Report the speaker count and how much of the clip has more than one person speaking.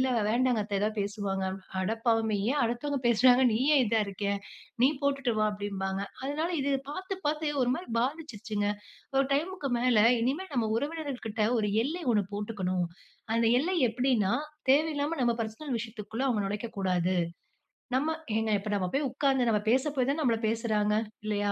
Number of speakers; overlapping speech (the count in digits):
1, no overlap